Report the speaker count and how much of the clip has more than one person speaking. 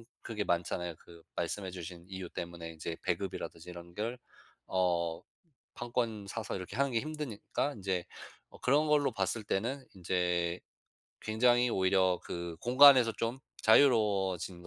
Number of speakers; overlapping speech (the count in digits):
1, no overlap